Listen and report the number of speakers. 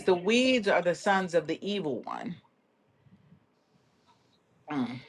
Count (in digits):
1